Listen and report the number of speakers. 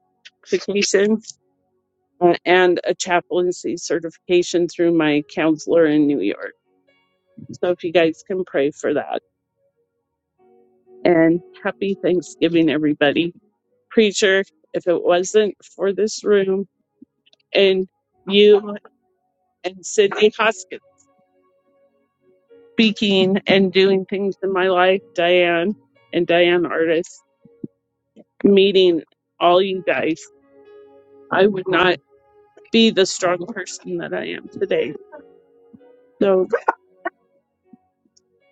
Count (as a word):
one